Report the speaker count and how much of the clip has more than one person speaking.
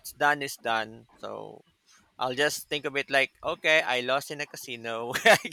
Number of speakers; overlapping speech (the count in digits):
1, no overlap